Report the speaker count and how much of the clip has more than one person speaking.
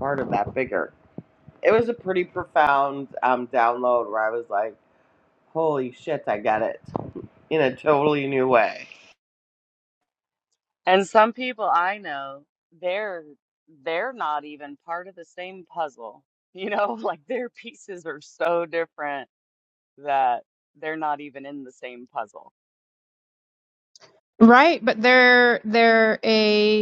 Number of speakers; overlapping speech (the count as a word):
three, no overlap